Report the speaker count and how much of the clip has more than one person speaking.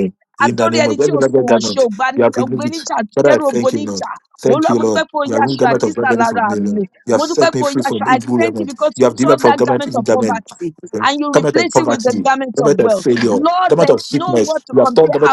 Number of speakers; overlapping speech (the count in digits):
2, about 83%